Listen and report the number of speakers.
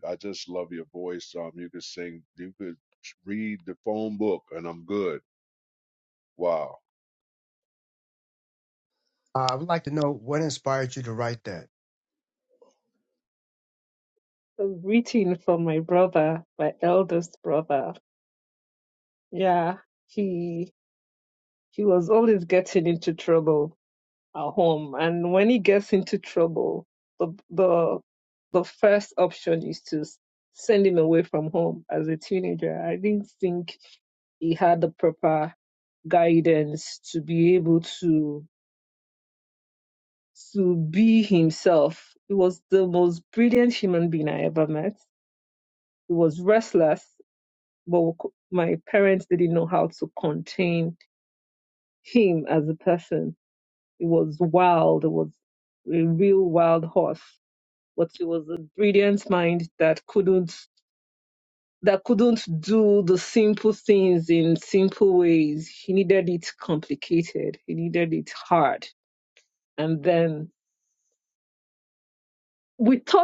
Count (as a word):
three